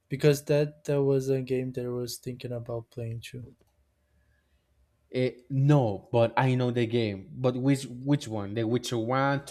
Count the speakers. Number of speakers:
two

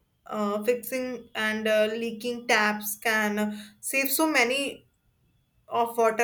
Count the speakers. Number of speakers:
one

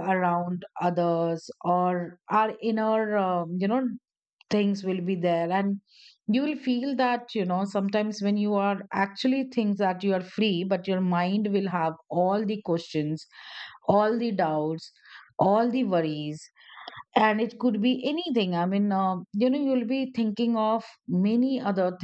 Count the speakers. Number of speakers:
one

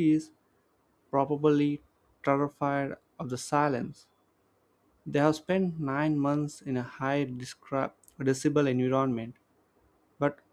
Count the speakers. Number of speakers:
one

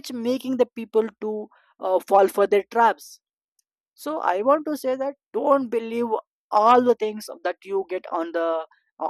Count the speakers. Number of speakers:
one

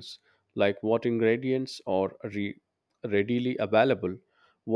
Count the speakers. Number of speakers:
one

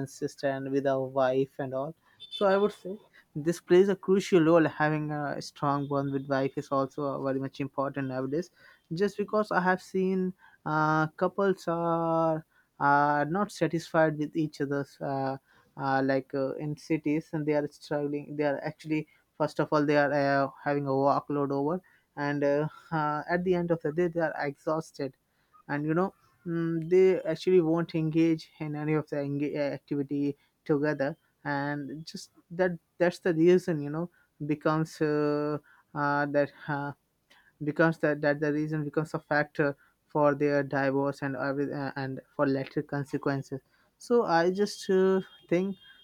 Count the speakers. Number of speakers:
one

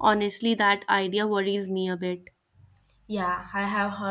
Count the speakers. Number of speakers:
two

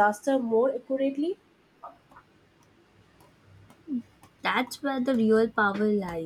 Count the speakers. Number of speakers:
two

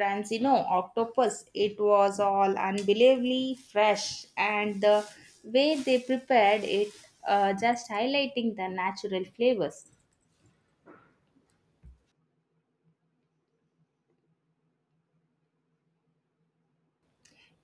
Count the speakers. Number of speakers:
one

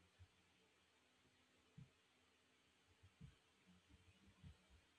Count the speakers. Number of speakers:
zero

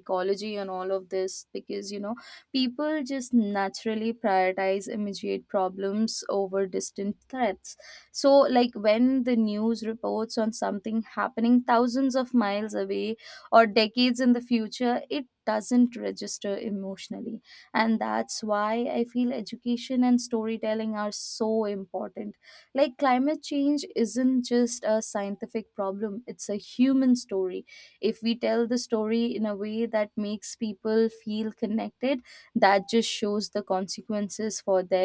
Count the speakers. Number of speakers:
one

